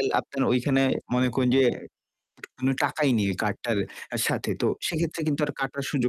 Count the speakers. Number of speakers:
1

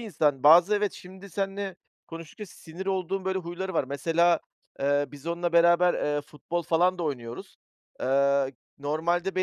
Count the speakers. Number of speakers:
1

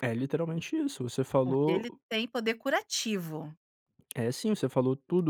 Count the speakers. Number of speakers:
2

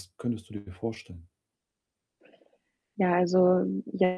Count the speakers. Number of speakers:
2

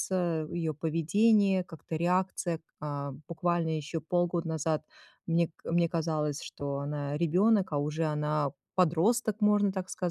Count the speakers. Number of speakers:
1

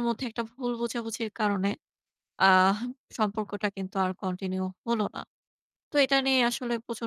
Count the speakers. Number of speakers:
1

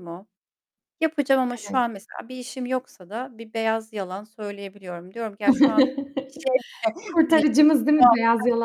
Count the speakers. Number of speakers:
2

